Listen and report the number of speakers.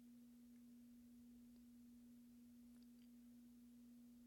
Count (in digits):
0